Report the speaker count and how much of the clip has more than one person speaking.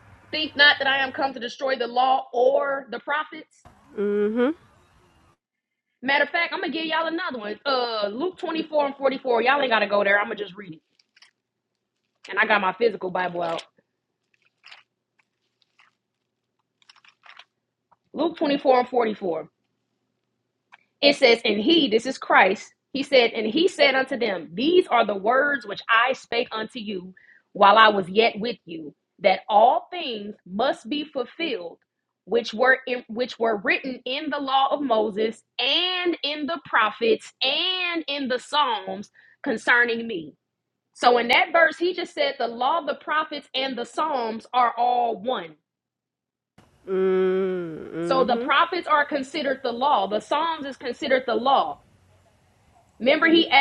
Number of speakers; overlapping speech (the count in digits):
2, about 1%